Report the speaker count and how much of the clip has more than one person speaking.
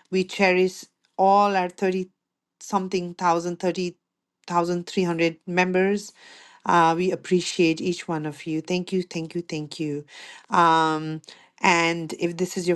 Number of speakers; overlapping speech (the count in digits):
1, no overlap